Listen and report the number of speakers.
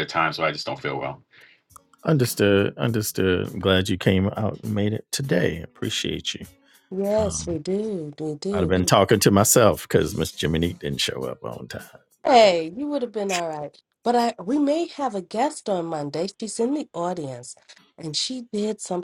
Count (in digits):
3